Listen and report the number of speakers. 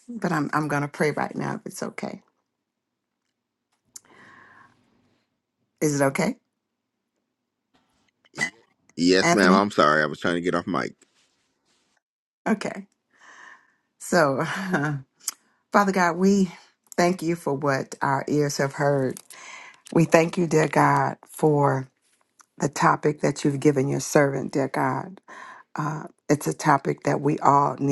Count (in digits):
2